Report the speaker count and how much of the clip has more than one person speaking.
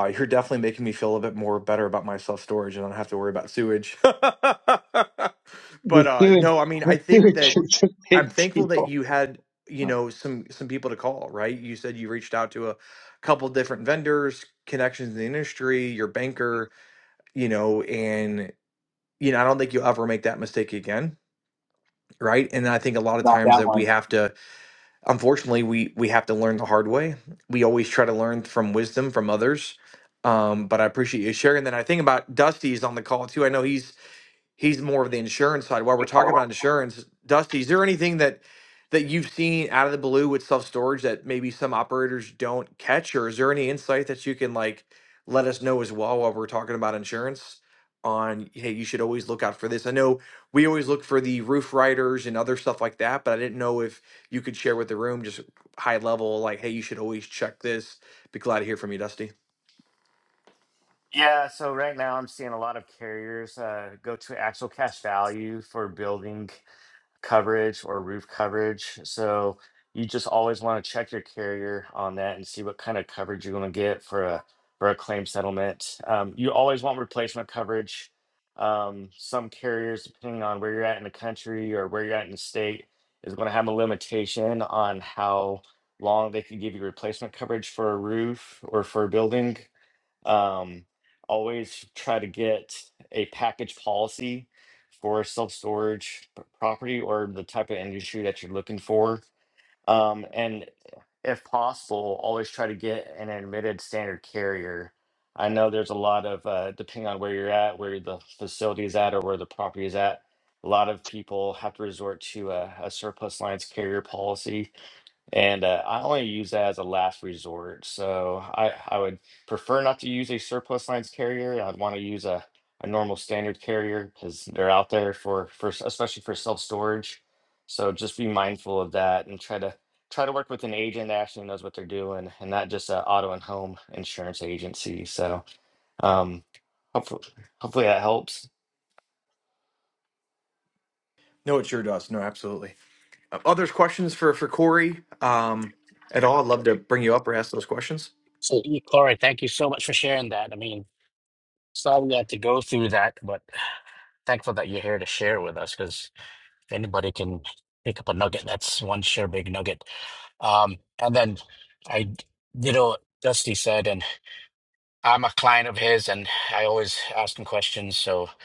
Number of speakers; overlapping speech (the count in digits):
4, about 2%